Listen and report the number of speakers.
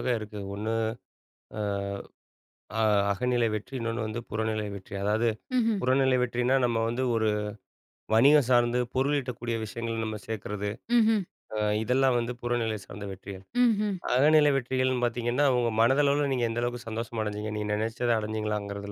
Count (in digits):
2